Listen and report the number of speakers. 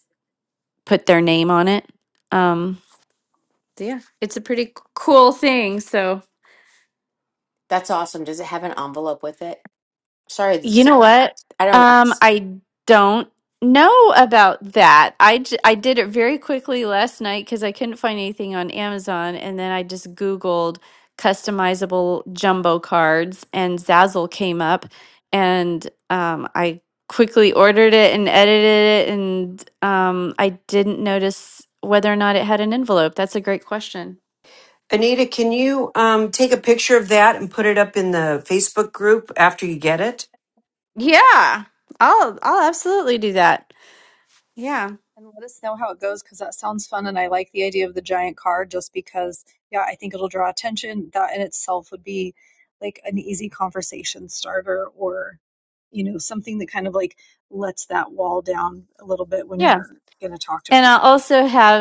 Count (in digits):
4